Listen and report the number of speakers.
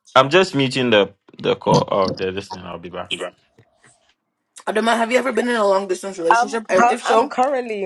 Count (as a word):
three